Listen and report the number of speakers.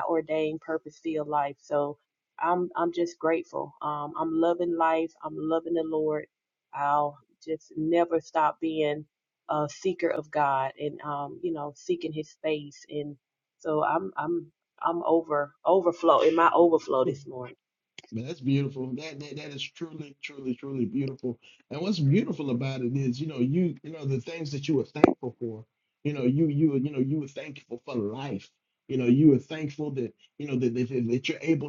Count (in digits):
2